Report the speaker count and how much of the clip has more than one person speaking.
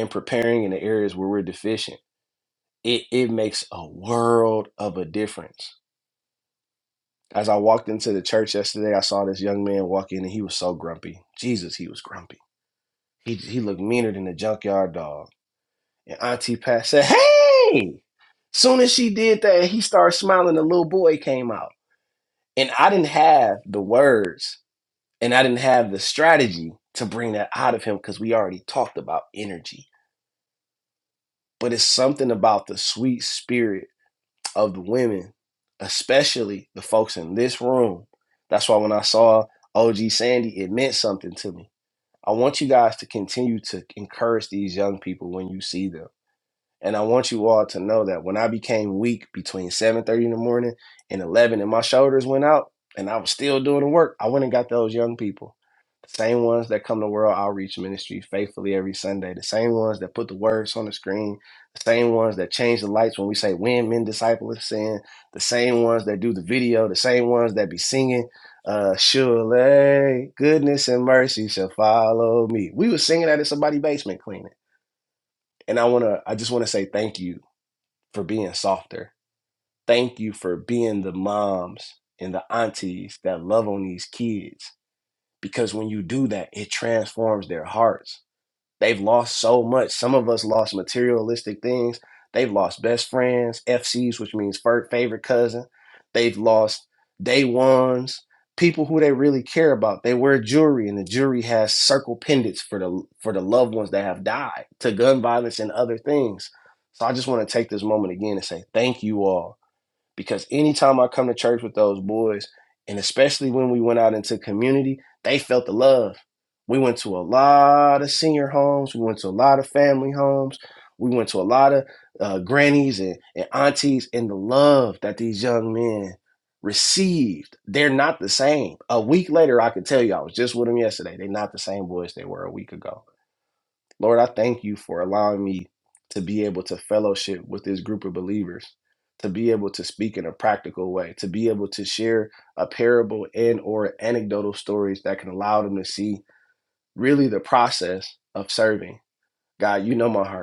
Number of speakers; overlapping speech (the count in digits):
1, no overlap